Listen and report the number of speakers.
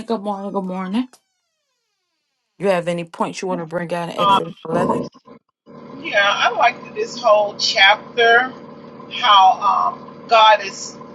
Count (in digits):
2